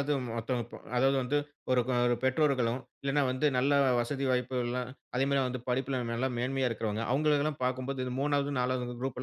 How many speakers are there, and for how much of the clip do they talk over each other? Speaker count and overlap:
1, no overlap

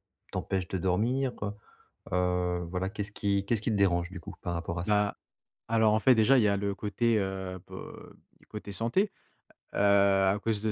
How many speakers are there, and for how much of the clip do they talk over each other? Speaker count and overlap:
2, under 1%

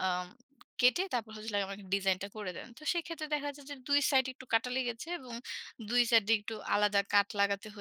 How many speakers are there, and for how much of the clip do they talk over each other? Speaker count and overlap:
1, no overlap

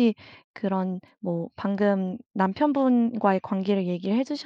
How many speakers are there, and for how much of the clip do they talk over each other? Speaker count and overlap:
1, no overlap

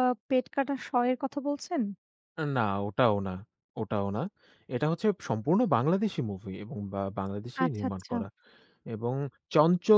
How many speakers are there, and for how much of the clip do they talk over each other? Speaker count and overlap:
2, about 7%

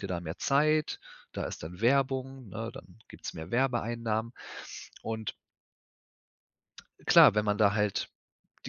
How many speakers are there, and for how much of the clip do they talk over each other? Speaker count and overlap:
1, no overlap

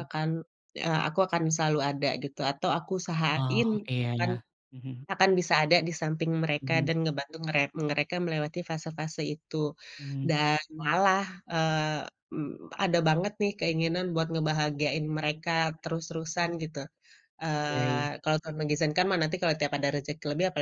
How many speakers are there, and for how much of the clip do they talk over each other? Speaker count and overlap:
2, about 6%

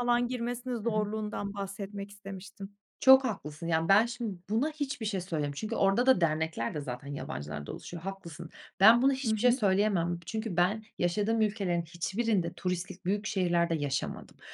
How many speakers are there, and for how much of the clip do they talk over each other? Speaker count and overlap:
2, about 4%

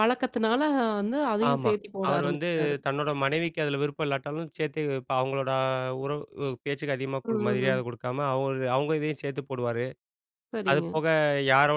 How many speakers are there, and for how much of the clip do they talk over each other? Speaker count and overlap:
2, about 16%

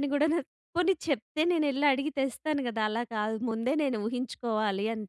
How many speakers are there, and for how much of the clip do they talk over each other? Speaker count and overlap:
1, no overlap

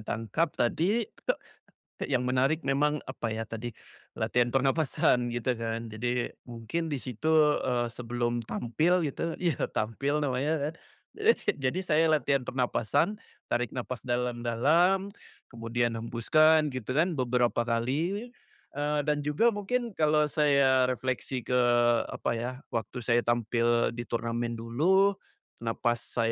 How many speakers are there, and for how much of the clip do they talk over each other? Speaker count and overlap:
1, no overlap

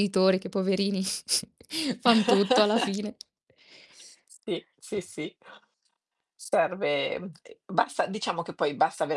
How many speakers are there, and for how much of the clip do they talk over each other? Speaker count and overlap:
2, no overlap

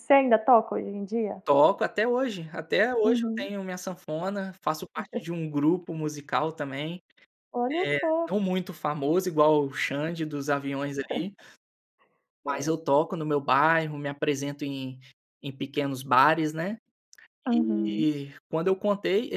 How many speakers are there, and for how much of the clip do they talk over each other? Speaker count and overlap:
2, about 9%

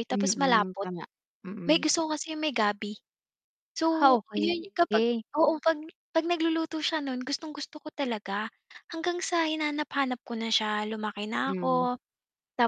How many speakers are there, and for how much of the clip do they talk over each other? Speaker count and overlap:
2, about 17%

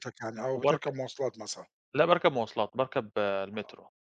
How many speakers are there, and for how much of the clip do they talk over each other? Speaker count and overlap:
2, about 12%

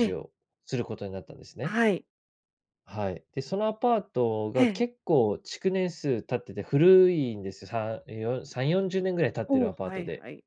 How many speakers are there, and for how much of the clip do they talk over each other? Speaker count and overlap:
2, about 11%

